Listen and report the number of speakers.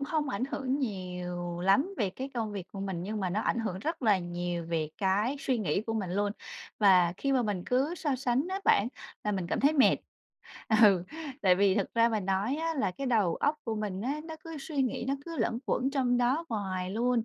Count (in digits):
1